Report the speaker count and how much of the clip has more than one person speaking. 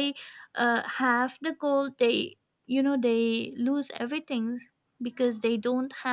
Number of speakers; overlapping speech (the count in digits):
1, no overlap